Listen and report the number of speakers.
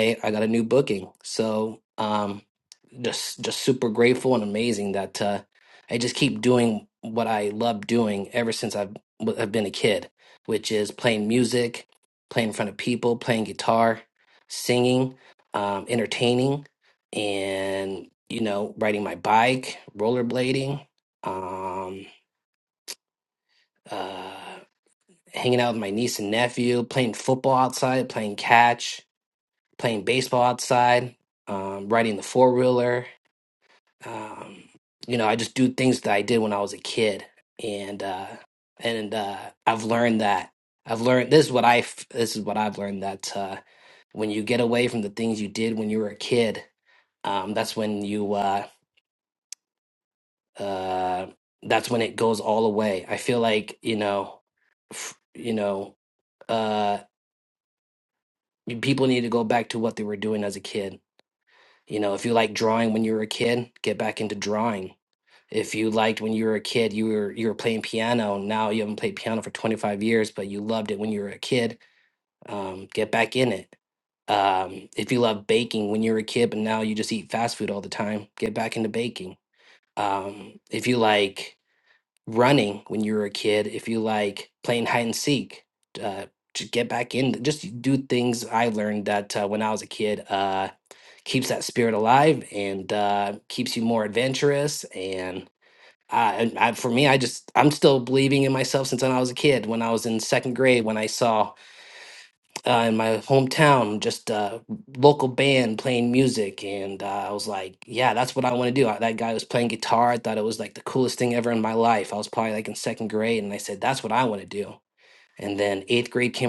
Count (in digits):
1